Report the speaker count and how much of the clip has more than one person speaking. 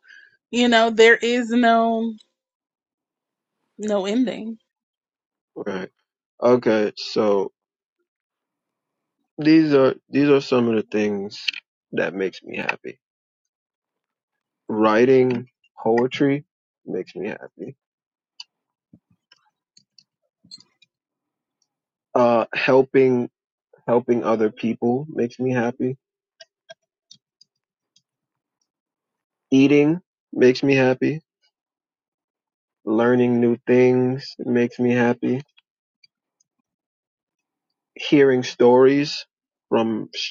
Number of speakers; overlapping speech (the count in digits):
2, no overlap